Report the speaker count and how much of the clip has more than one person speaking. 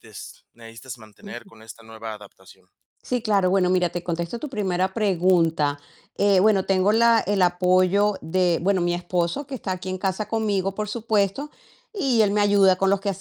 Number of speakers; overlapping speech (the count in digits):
2, about 2%